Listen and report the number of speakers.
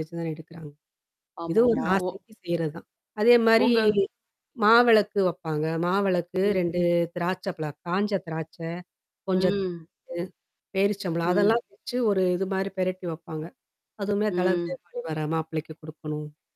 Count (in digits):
2